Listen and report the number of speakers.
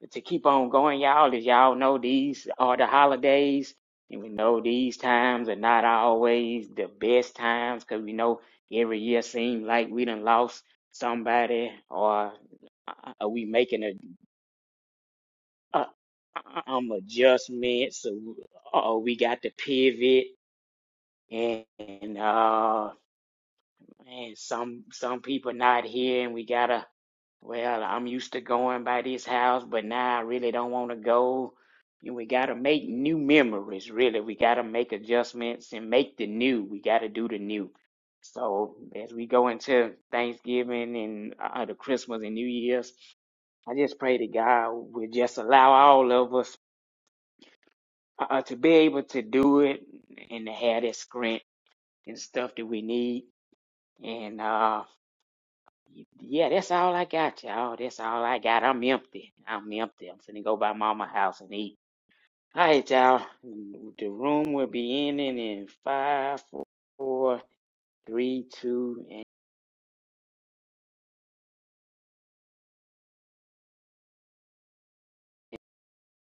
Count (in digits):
1